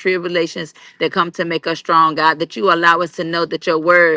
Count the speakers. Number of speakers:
1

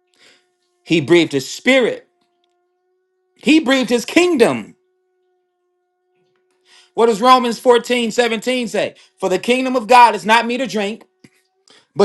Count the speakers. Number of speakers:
1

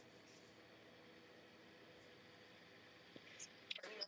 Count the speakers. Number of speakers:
0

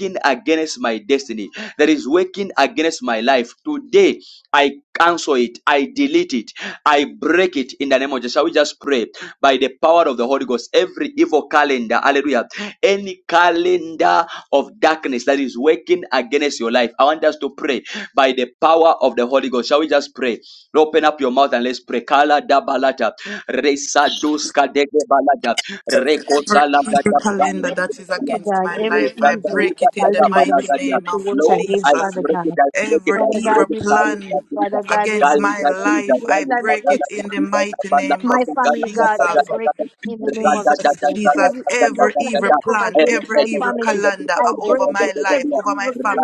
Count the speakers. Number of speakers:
3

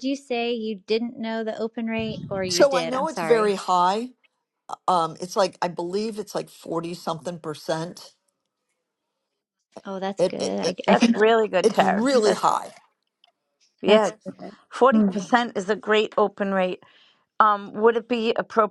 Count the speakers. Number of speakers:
3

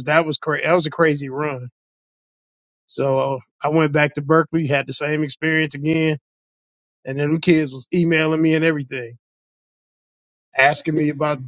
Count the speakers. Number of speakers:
1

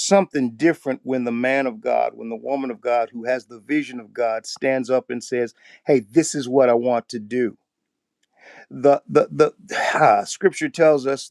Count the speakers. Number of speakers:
1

